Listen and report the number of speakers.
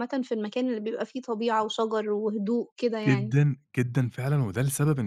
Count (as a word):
two